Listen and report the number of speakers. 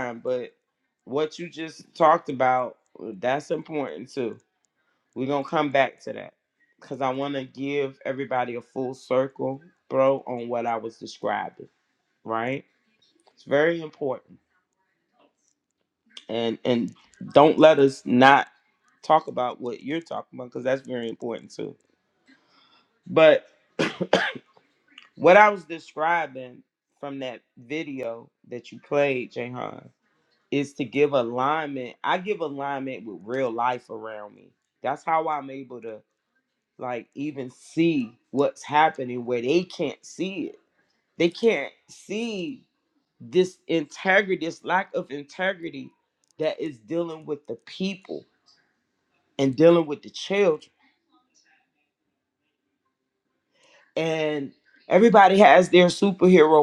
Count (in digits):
1